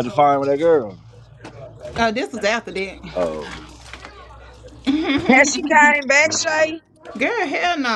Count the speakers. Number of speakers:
3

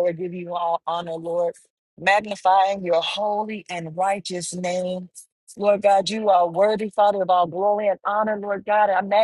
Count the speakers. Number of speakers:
1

